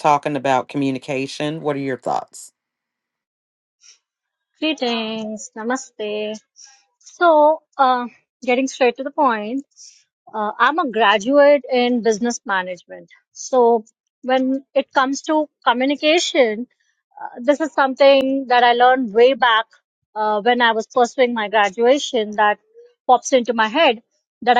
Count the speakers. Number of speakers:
two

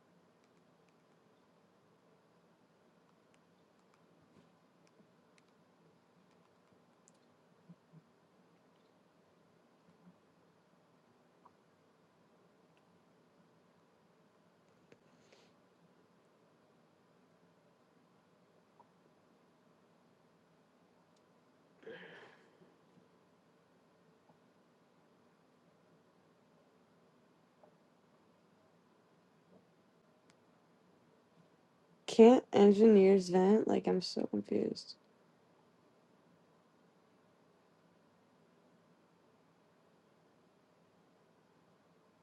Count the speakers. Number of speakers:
one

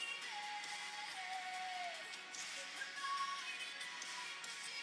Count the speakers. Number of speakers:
zero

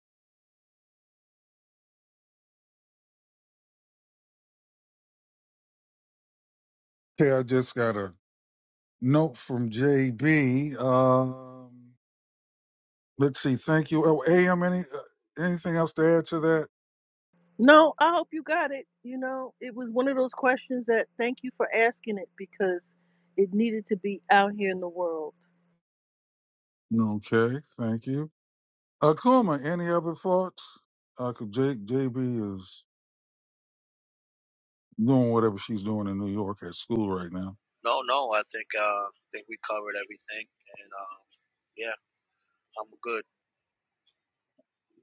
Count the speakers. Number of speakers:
three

